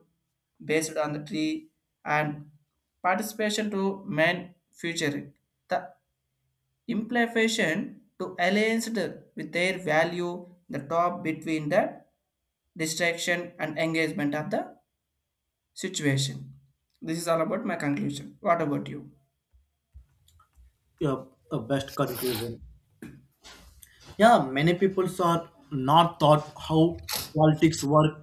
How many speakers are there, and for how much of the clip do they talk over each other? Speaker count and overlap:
two, no overlap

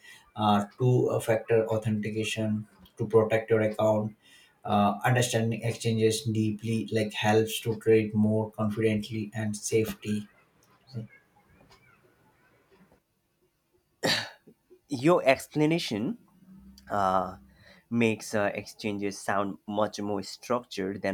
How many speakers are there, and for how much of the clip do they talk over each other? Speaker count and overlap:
two, no overlap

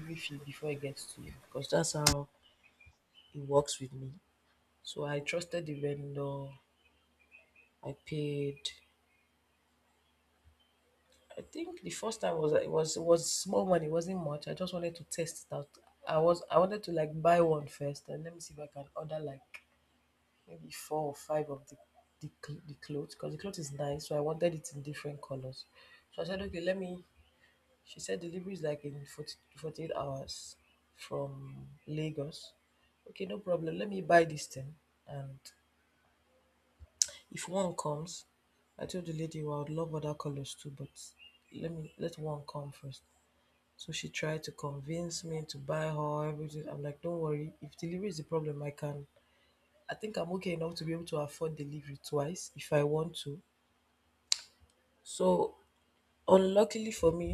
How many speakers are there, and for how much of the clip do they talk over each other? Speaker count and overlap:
one, no overlap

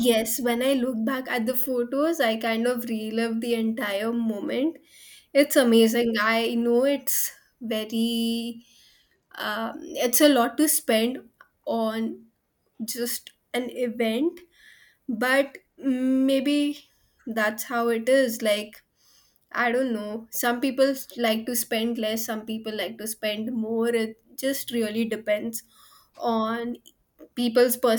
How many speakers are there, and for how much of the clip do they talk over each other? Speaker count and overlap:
one, no overlap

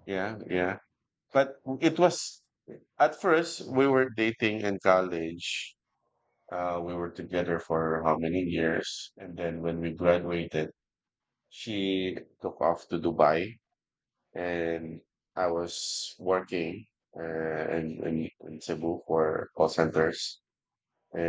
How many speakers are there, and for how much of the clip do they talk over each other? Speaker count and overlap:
one, no overlap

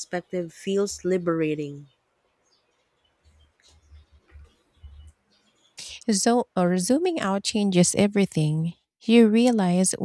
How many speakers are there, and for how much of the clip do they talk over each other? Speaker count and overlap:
two, no overlap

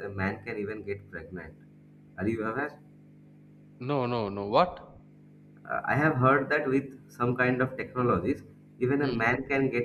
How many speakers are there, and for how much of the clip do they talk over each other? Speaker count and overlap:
two, about 2%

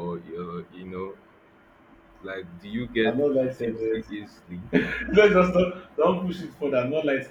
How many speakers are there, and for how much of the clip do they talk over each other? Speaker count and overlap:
two, about 8%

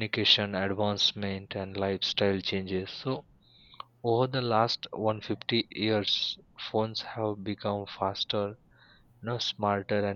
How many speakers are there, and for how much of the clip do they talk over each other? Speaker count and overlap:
one, no overlap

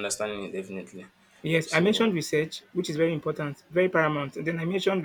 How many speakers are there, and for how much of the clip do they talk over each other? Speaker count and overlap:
two, about 10%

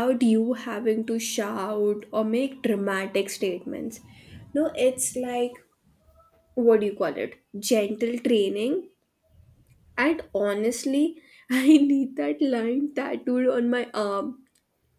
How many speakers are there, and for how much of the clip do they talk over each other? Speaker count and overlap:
one, no overlap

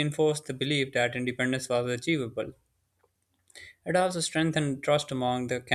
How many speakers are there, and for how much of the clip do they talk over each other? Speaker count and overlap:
one, no overlap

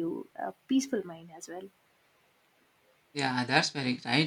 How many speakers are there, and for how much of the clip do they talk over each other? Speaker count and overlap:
two, no overlap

